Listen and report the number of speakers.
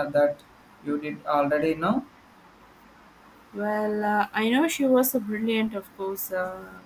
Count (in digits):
2